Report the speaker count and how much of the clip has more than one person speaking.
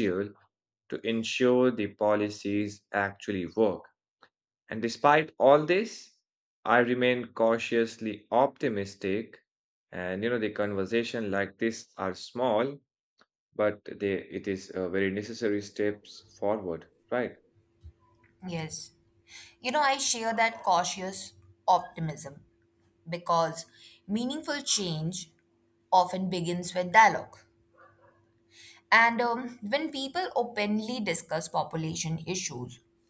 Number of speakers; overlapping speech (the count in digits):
2, no overlap